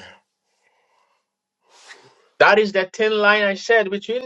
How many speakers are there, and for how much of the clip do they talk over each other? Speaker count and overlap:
one, no overlap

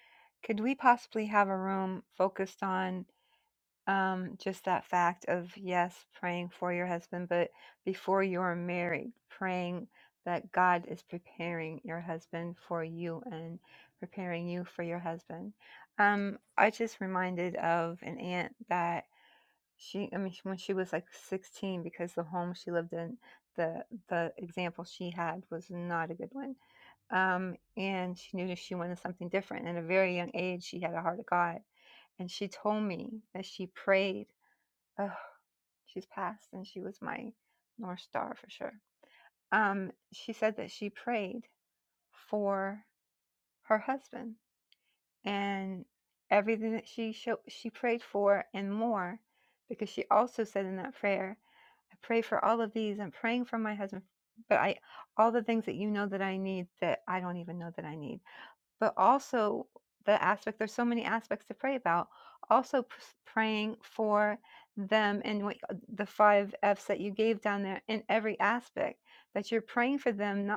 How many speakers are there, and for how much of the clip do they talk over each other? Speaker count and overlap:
one, no overlap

